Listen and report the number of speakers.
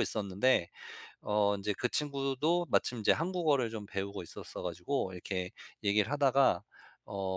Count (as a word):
one